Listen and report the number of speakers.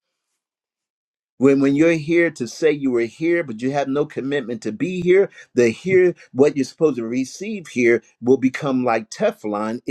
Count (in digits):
1